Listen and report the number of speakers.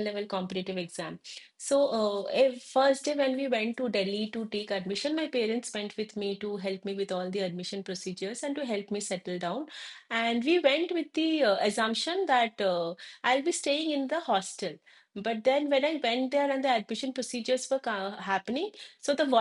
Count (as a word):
one